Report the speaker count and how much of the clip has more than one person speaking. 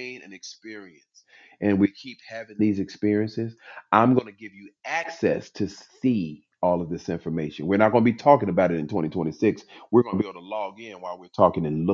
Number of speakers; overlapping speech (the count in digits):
1, no overlap